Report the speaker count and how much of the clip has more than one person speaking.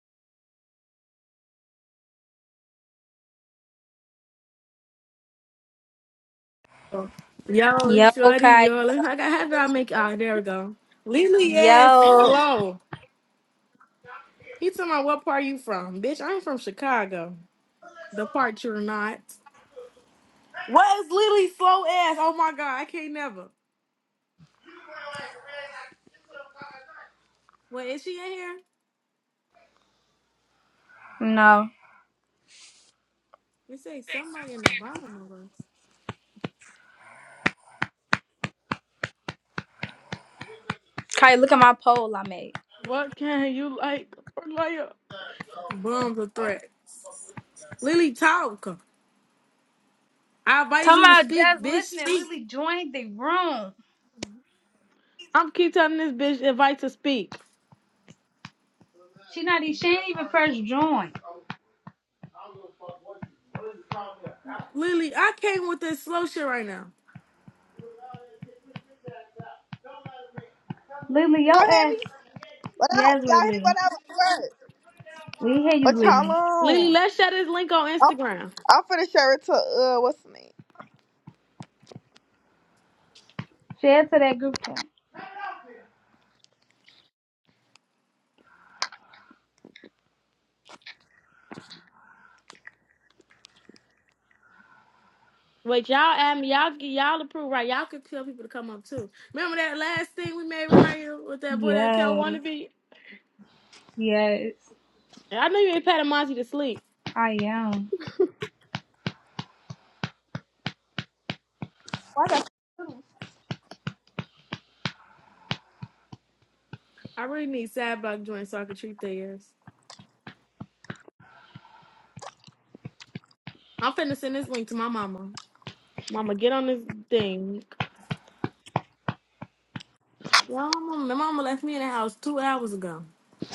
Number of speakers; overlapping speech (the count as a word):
three, about 5%